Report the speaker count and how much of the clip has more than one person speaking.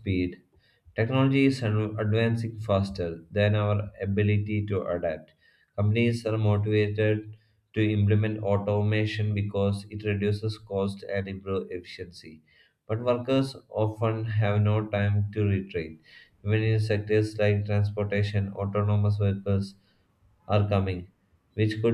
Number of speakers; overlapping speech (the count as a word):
one, no overlap